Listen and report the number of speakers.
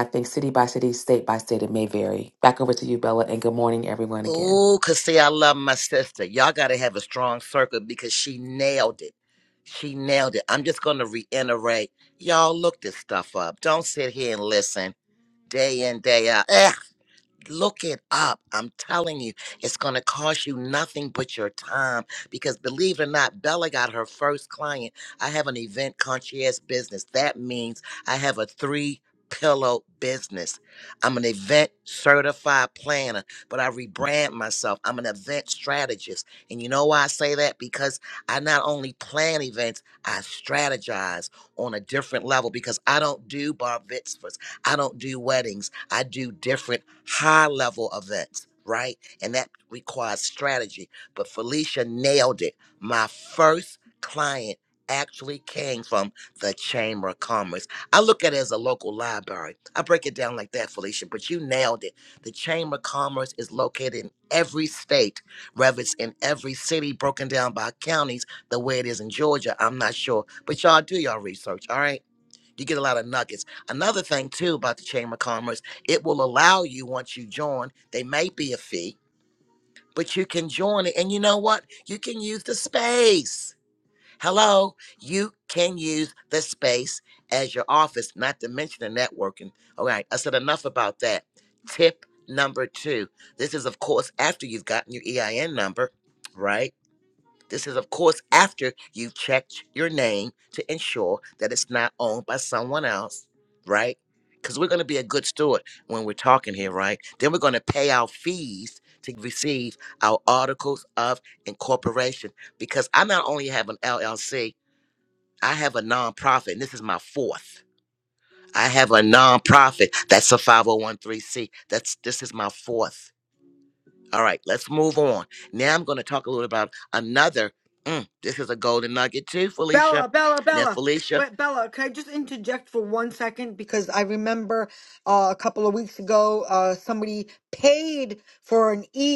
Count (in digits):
3